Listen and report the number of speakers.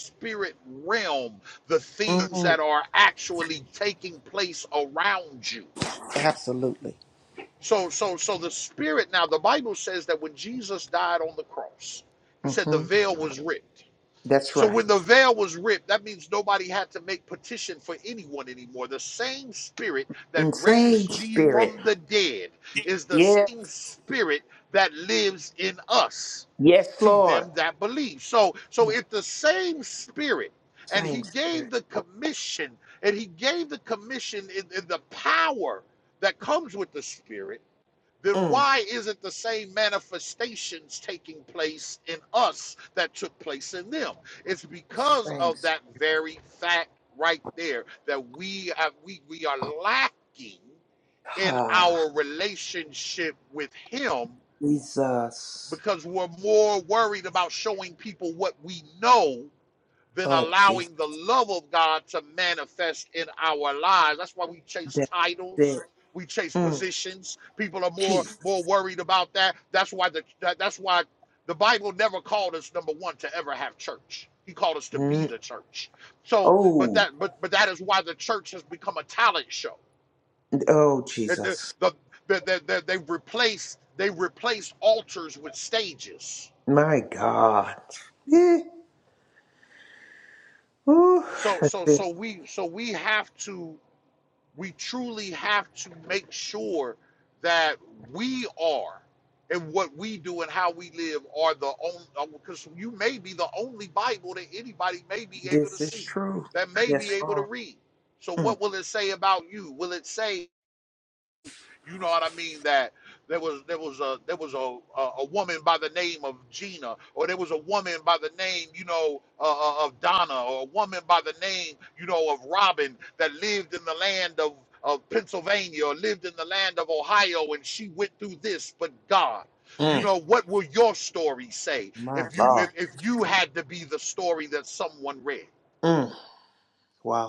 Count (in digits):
2